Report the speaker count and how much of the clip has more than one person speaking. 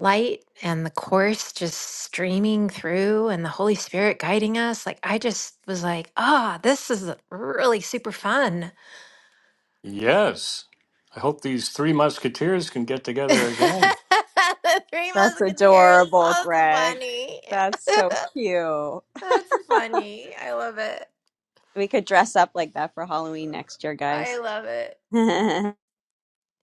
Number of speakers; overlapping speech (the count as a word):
three, about 10%